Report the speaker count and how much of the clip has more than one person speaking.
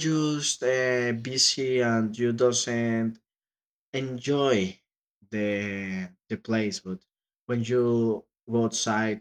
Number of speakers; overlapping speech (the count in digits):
1, no overlap